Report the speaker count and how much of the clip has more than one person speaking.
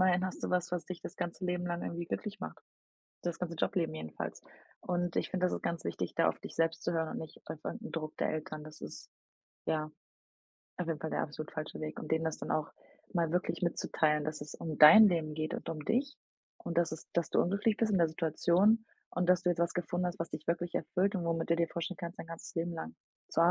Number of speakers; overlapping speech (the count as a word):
one, no overlap